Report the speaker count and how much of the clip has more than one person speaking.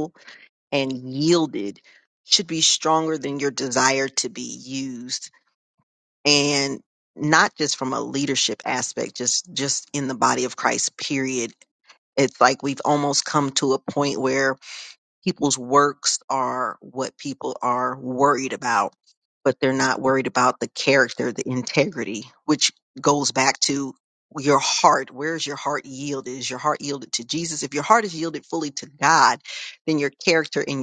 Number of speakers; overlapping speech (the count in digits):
1, no overlap